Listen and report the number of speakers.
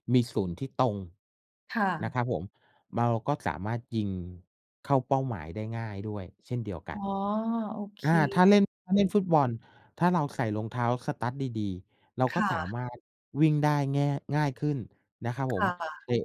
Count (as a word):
two